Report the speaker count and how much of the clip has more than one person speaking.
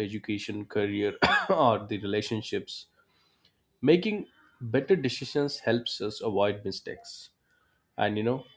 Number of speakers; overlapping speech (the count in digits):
1, no overlap